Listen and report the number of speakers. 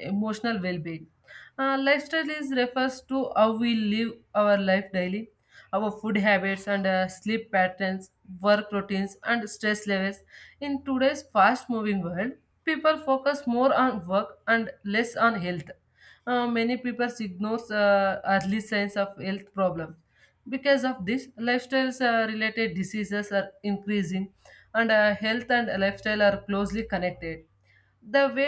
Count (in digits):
1